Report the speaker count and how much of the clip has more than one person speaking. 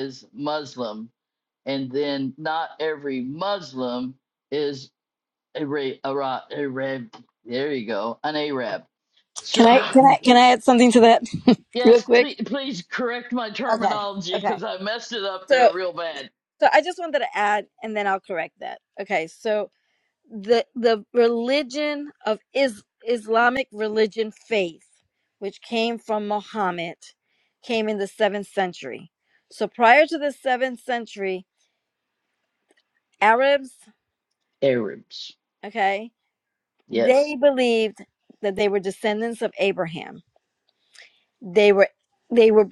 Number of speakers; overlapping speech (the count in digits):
2, about 4%